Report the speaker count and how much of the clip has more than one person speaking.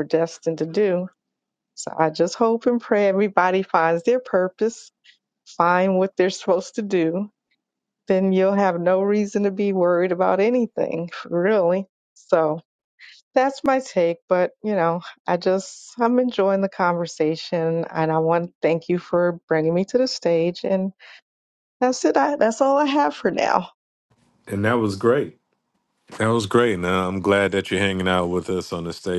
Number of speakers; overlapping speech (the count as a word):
two, no overlap